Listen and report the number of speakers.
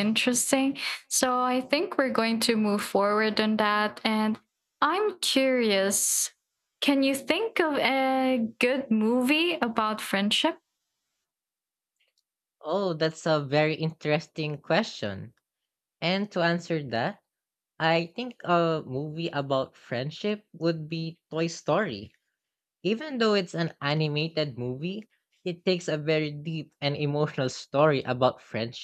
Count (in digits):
2